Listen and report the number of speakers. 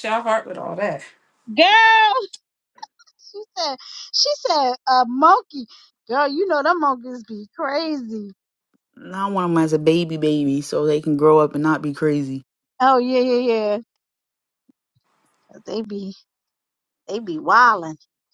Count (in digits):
3